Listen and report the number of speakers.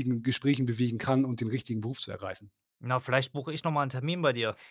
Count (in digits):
2